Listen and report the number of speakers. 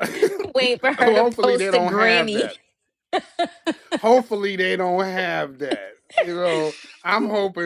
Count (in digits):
2